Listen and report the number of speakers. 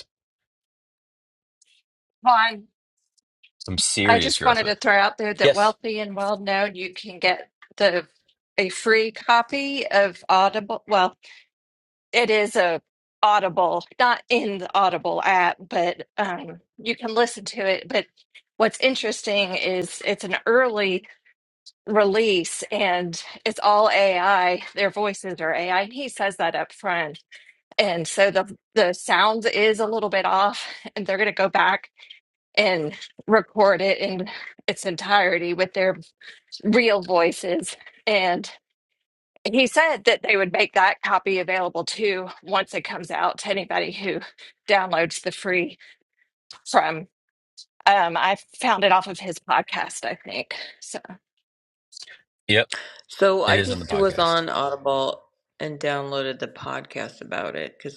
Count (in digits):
3